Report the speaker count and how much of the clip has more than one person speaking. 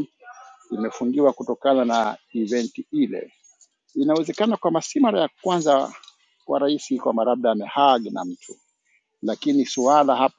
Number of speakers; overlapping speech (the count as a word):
one, no overlap